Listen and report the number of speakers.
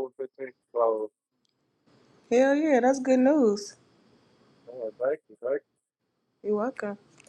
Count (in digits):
2